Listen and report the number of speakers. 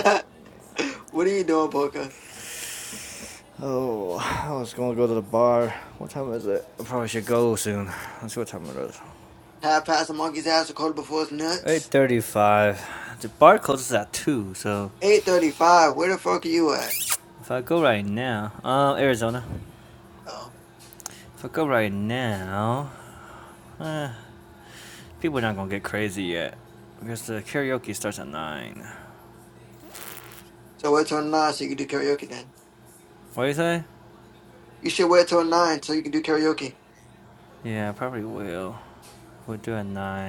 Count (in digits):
2